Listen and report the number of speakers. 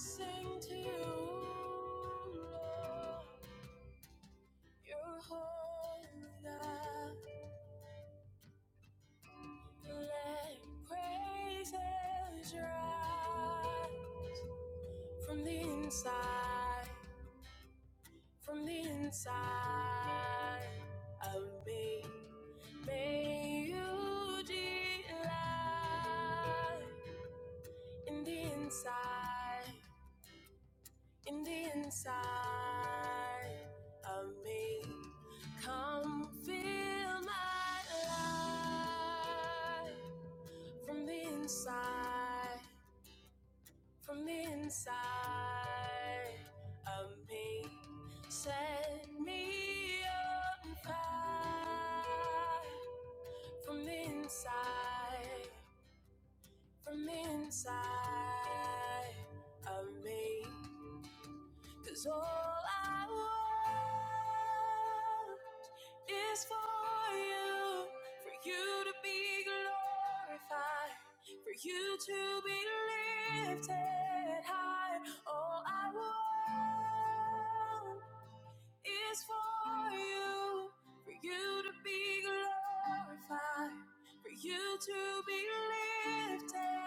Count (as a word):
one